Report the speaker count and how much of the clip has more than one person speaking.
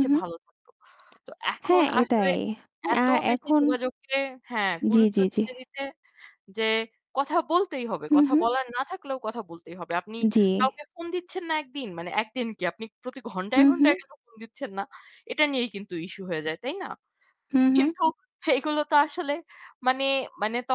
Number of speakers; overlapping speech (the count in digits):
2, about 15%